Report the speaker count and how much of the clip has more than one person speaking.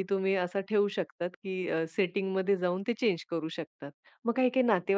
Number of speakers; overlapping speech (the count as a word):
one, no overlap